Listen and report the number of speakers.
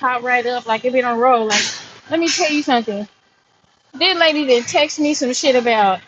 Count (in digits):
1